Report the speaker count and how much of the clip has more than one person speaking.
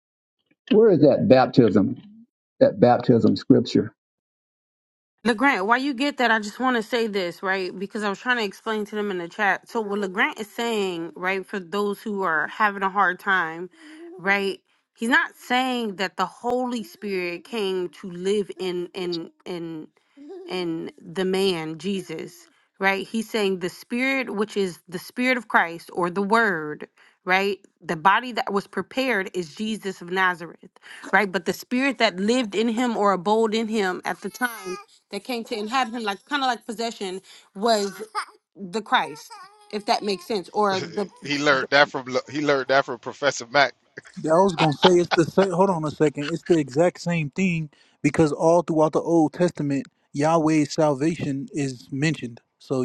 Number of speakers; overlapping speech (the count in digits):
4, no overlap